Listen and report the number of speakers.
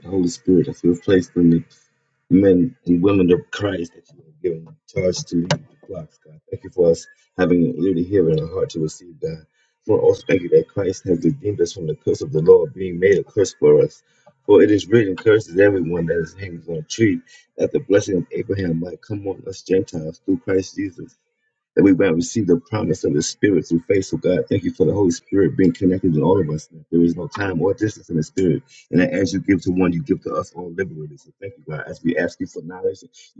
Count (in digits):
1